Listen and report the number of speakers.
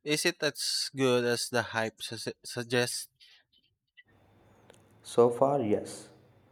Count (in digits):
2